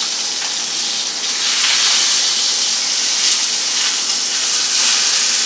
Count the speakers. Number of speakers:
0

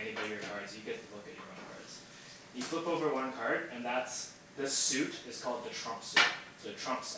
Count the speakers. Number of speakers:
1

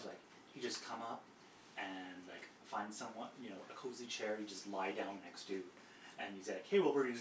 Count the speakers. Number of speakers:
1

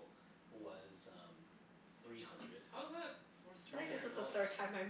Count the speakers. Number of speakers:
3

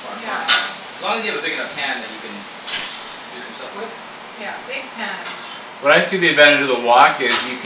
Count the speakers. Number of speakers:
3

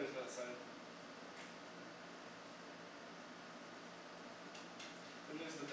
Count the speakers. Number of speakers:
1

